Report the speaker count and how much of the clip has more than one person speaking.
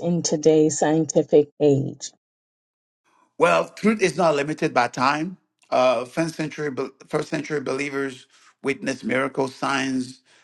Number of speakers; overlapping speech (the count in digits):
2, no overlap